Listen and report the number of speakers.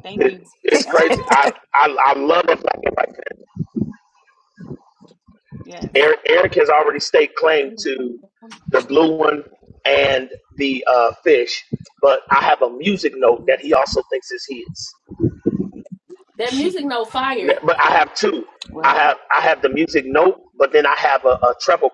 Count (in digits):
3